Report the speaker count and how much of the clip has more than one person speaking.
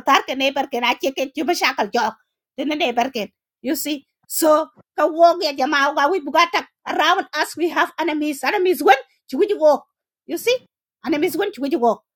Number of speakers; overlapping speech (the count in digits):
1, no overlap